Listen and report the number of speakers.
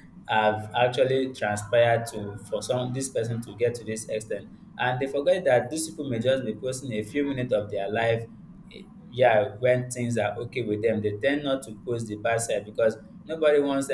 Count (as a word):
one